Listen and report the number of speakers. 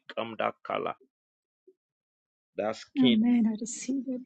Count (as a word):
two